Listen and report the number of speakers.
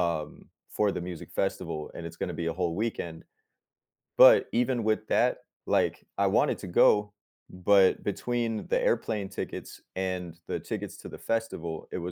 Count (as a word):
one